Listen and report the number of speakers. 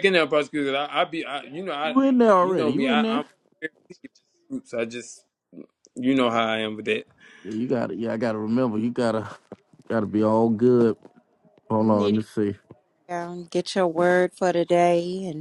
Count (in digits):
3